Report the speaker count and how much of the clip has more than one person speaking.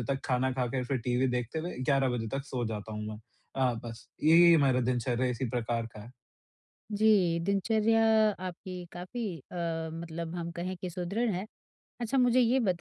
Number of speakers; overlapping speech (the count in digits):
2, no overlap